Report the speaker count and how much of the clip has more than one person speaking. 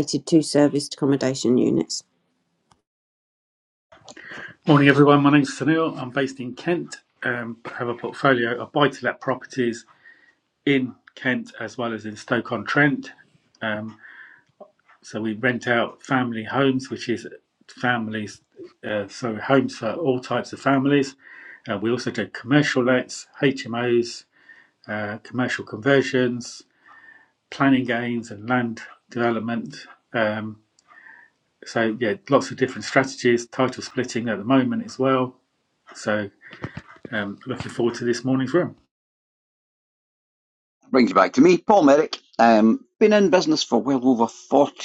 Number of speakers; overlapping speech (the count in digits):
3, no overlap